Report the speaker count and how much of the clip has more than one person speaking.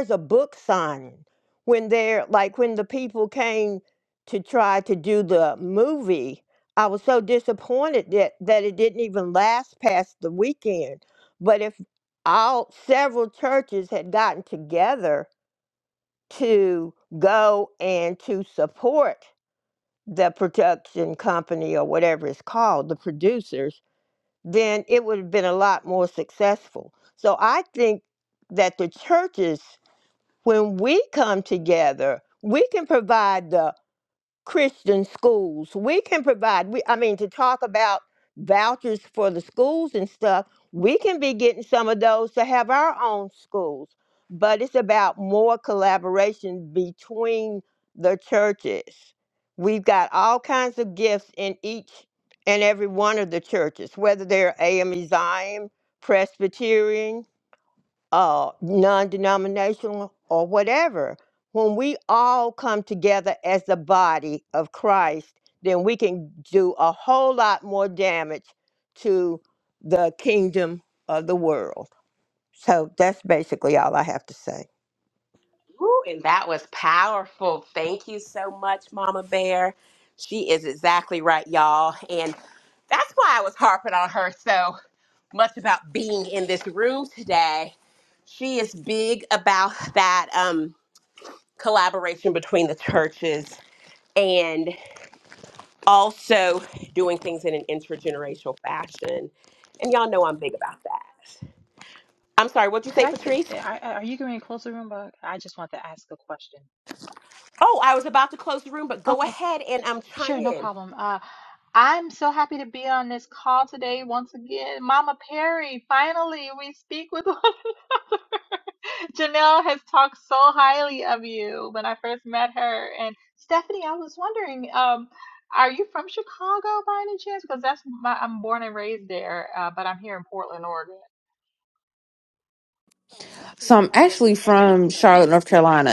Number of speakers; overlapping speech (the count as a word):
four, about 1%